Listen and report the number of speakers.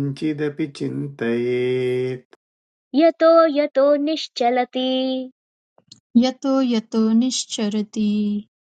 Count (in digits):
3